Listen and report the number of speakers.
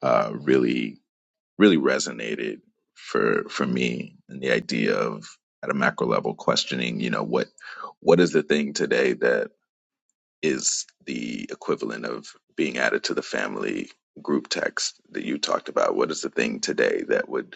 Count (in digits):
1